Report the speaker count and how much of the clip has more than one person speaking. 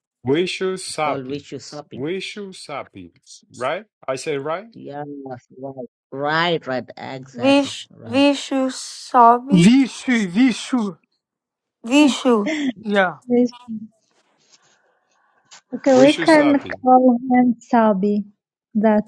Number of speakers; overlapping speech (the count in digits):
5, about 12%